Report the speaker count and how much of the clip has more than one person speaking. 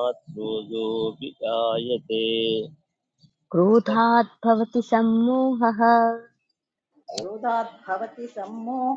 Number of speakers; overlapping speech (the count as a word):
three, about 3%